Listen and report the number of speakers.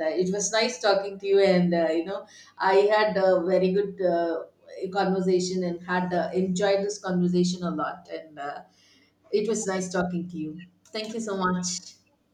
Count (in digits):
1